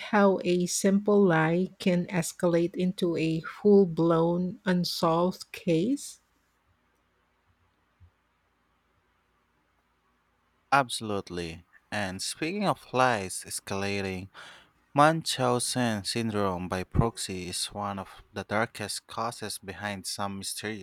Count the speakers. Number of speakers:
2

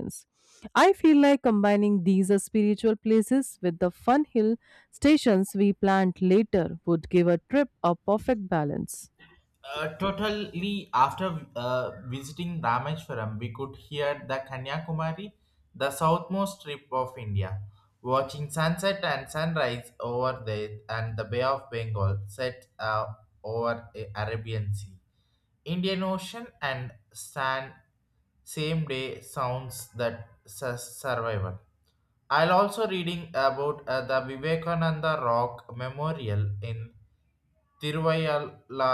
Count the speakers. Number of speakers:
2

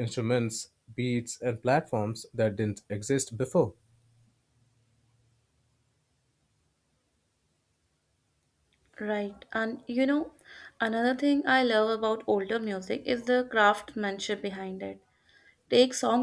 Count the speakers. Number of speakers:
2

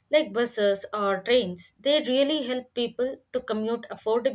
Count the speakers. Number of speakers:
1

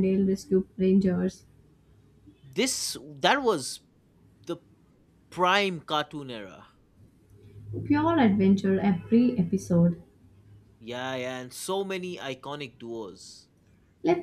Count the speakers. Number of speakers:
2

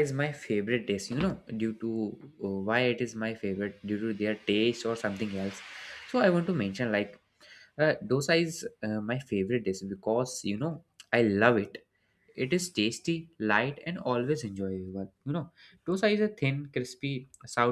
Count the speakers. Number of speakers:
1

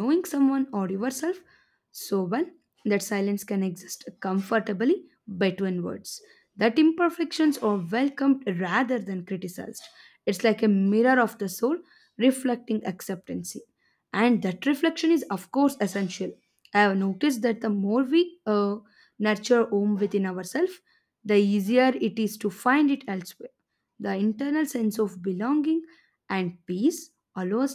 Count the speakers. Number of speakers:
1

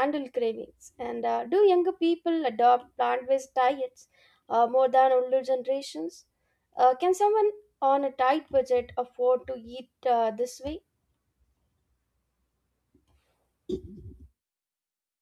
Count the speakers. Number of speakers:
1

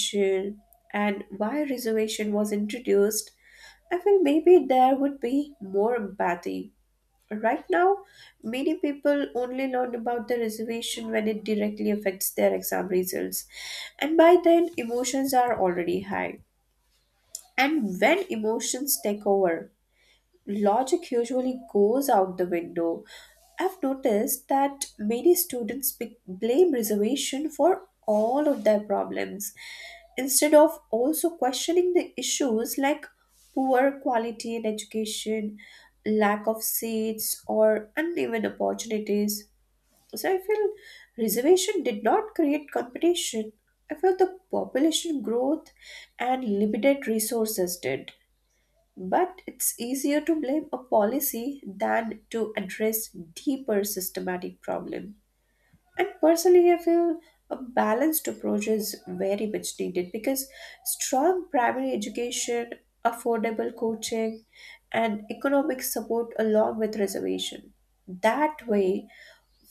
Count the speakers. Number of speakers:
1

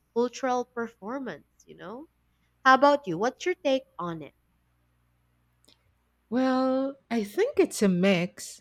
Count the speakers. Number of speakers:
2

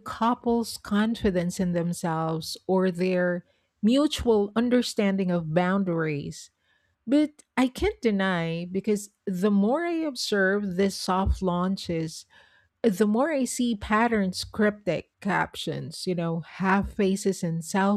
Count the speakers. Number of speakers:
1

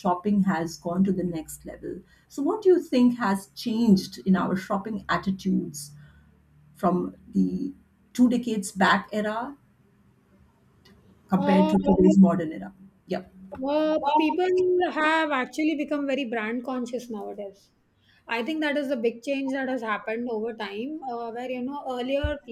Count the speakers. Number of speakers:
2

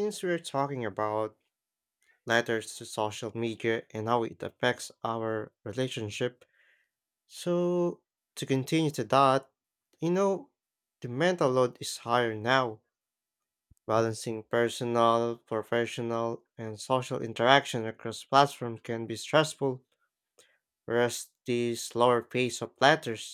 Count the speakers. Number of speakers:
1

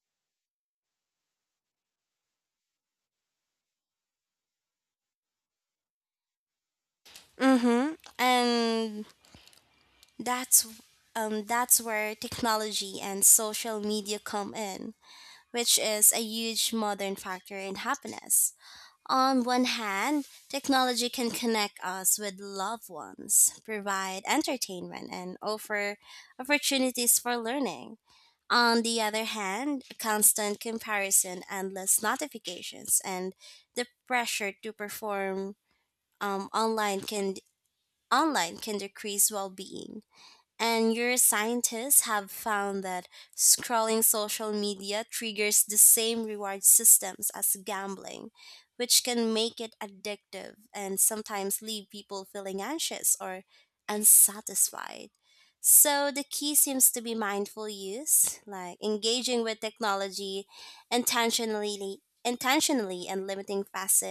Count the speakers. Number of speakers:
1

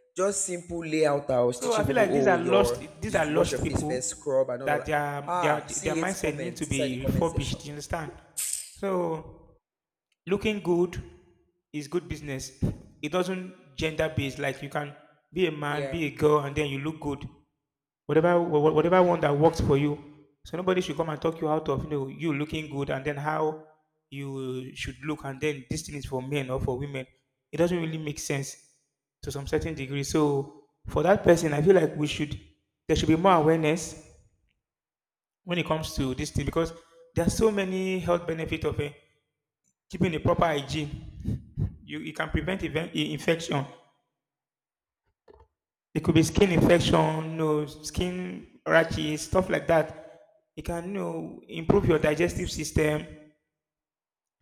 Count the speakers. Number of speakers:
2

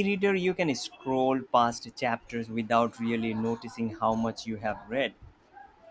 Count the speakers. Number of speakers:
1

